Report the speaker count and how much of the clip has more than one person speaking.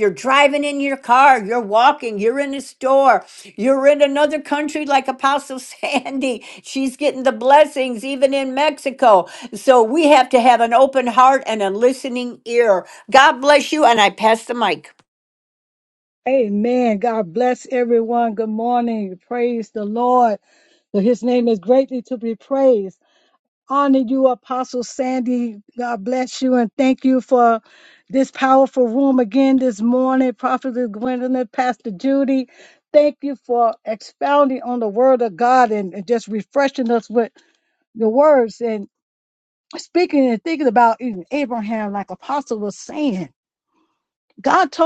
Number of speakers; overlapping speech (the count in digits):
2, no overlap